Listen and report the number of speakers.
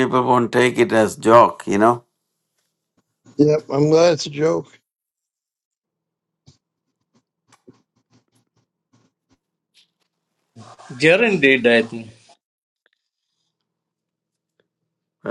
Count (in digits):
3